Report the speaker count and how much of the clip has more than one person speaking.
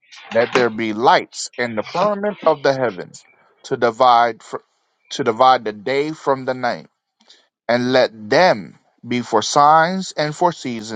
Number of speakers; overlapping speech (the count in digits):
1, no overlap